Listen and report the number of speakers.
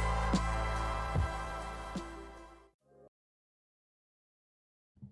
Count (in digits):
0